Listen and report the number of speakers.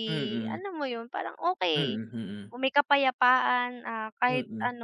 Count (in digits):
2